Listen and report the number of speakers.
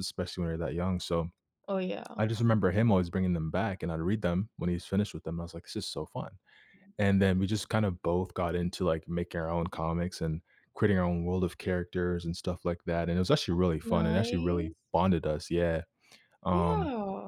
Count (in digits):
2